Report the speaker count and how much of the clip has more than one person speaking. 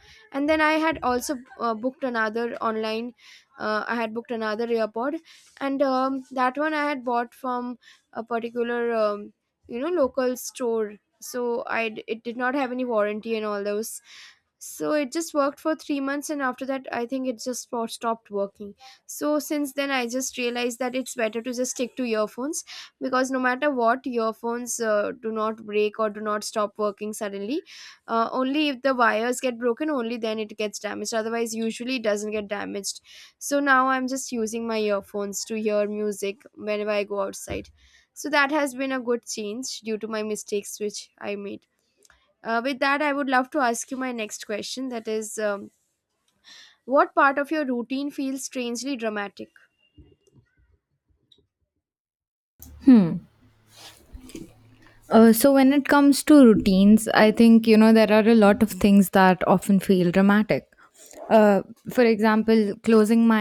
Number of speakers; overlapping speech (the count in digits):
2, no overlap